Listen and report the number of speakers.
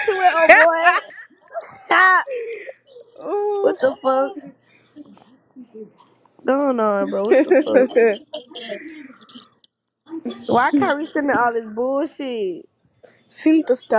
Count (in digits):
2